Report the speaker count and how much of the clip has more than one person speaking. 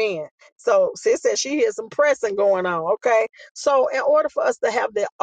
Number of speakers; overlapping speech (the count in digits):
1, no overlap